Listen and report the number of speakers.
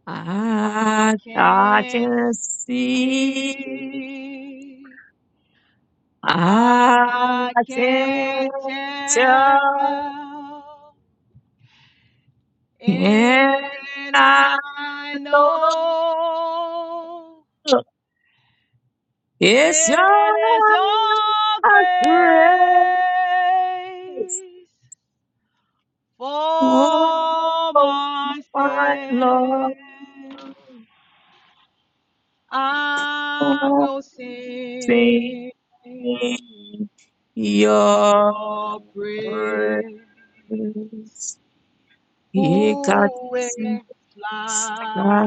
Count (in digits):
2